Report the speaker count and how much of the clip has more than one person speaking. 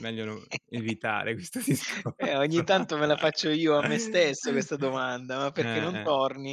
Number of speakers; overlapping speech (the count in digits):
2, about 15%